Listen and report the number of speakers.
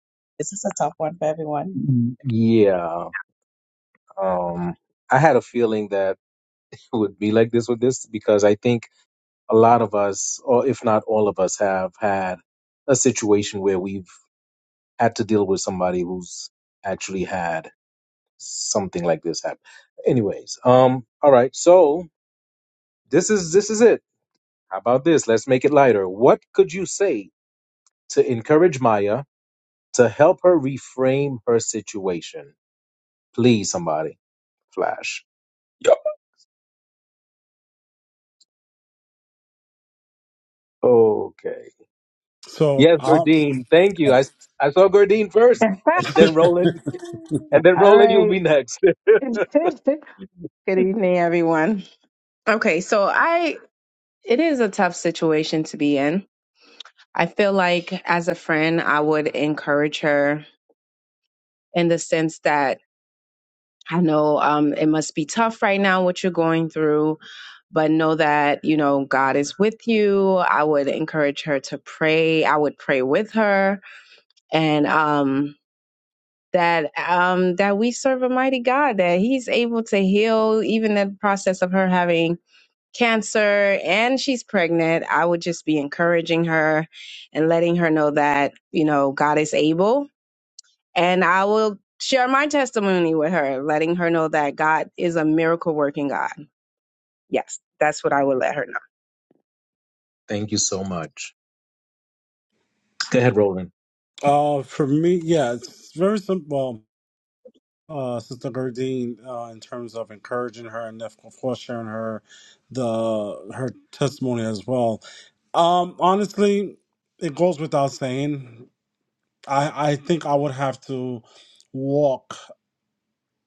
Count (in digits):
4